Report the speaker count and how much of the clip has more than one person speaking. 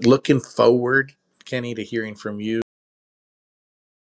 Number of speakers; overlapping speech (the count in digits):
1, no overlap